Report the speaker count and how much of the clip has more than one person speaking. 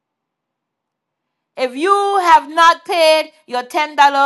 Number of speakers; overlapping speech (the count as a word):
one, no overlap